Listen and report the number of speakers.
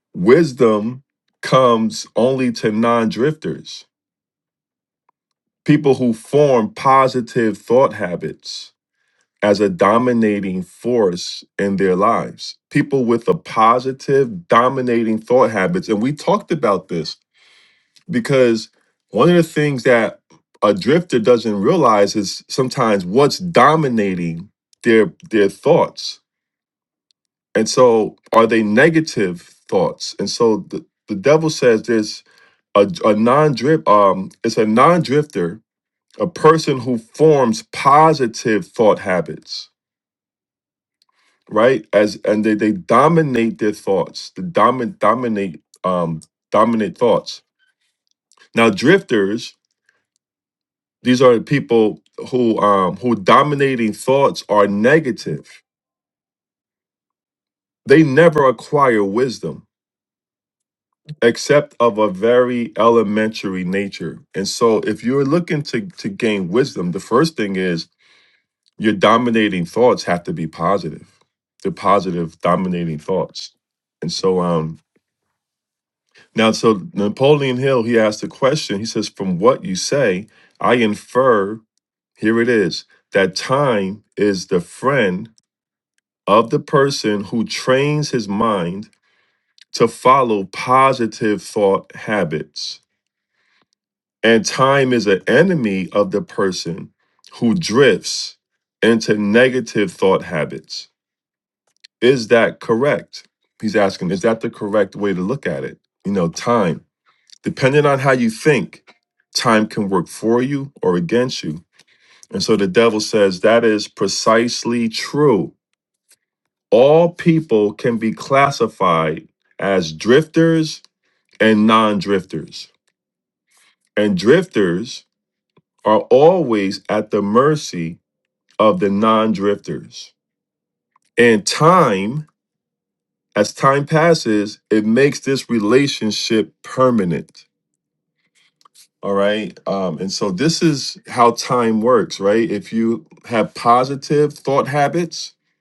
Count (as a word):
one